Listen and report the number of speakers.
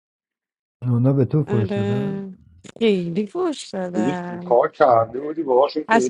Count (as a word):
three